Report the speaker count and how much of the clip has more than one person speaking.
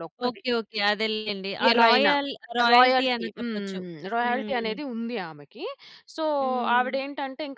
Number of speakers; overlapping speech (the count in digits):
2, about 35%